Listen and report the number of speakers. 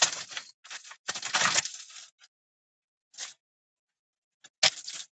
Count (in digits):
0